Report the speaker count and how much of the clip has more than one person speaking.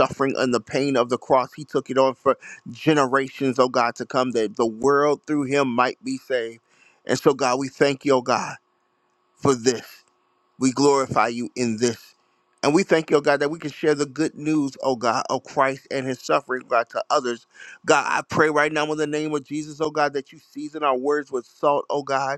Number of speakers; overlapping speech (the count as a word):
one, no overlap